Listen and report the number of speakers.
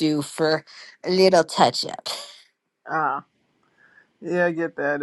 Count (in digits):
2